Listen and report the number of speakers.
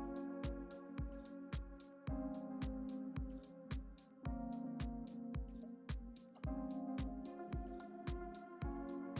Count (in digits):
0